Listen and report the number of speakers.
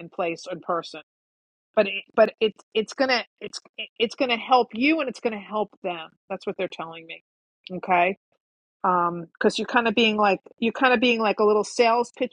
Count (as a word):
one